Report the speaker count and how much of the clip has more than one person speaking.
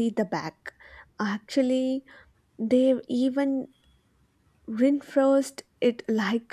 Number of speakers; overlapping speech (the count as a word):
one, no overlap